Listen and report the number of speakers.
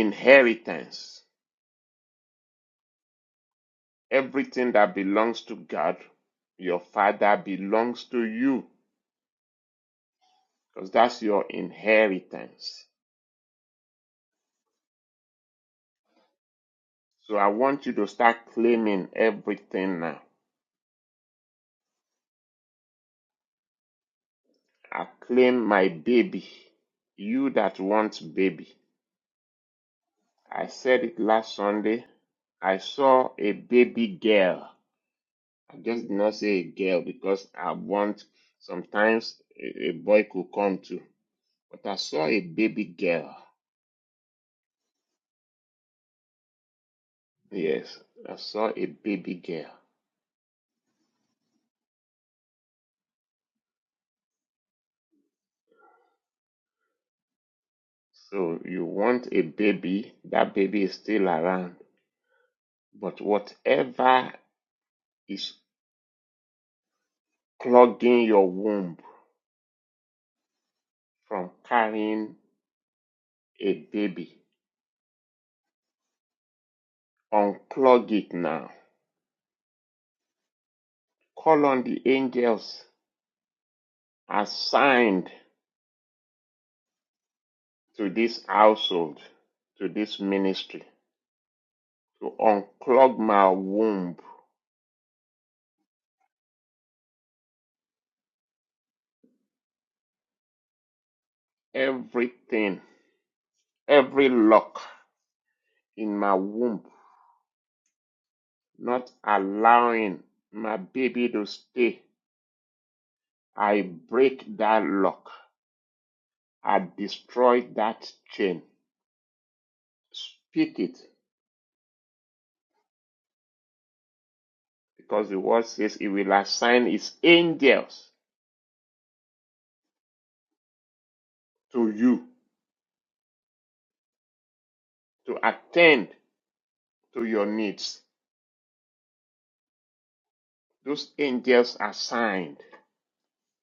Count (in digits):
1